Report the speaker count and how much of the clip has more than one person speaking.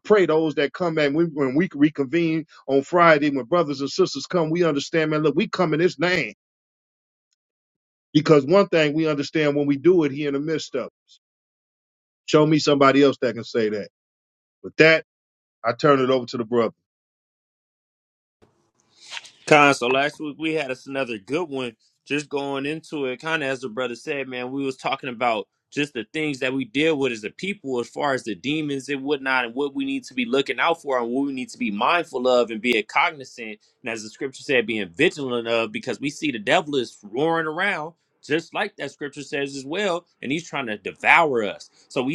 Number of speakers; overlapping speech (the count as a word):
two, no overlap